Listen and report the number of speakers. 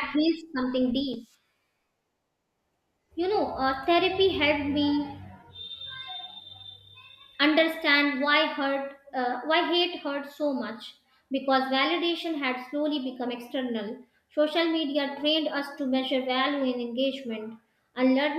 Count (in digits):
1